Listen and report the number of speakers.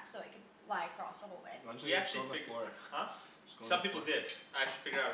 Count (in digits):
3